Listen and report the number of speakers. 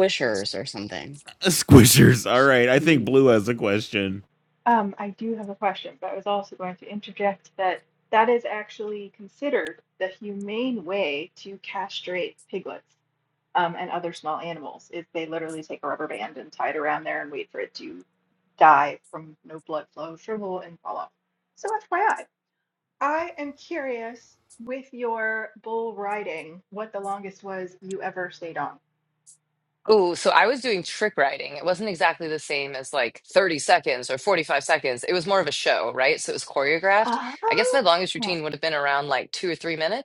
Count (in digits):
4